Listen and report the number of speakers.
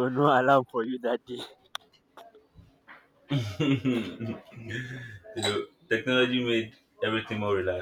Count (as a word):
two